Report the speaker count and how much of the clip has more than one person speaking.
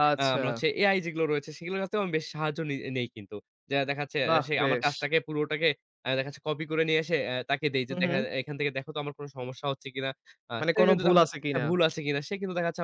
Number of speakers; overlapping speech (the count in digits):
2, about 18%